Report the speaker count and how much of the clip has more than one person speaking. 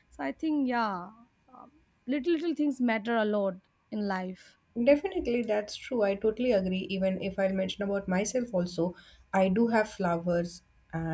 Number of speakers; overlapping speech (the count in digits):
2, no overlap